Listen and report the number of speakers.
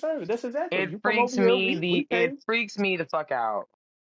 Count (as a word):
two